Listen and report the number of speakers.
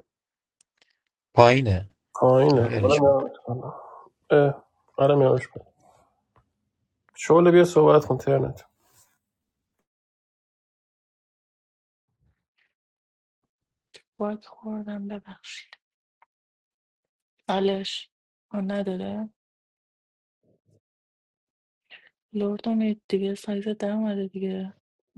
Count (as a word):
three